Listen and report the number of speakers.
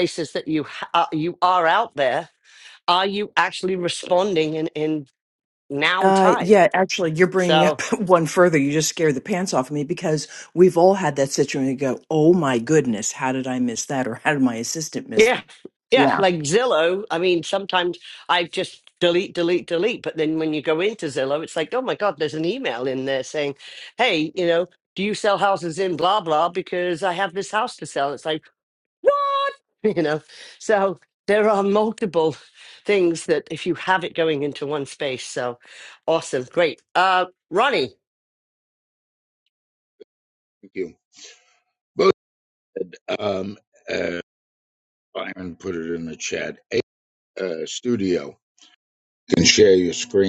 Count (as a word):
three